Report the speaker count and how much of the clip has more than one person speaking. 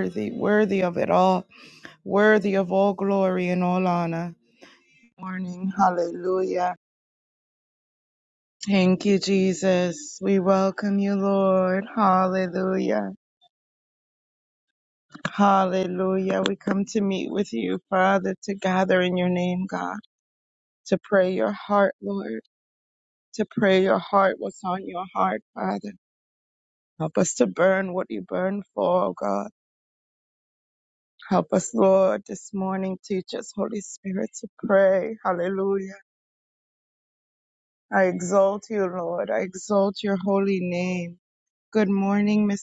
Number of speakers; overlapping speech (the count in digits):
1, no overlap